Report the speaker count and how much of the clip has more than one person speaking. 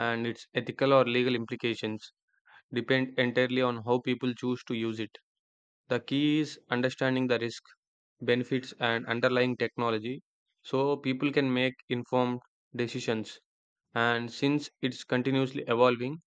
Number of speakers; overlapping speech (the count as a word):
one, no overlap